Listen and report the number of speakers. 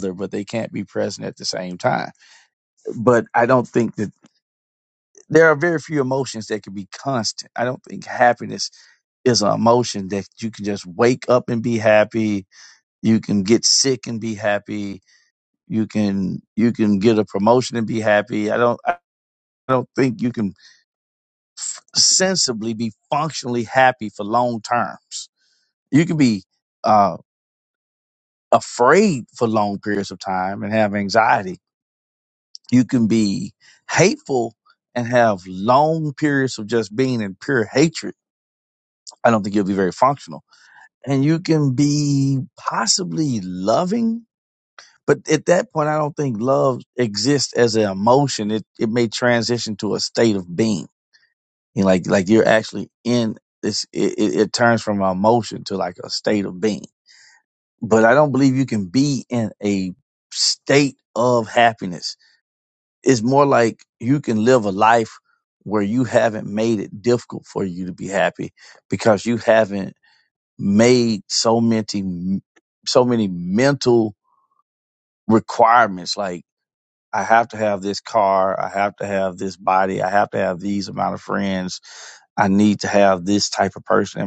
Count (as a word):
one